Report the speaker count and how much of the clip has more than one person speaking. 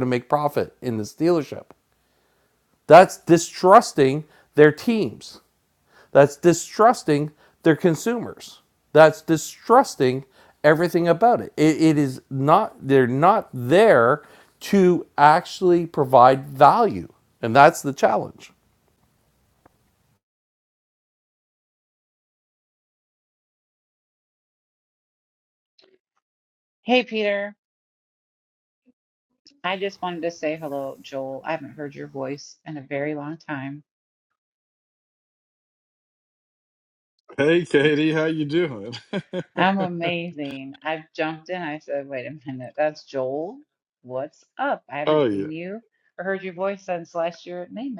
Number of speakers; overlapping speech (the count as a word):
three, about 1%